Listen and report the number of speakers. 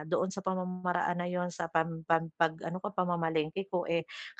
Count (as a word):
one